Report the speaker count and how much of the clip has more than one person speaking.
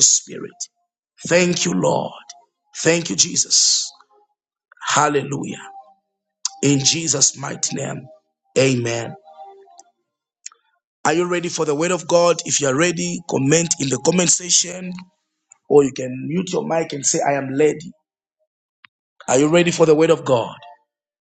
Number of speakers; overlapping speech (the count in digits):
1, no overlap